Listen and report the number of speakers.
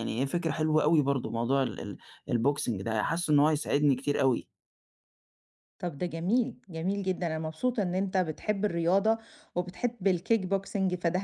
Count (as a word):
two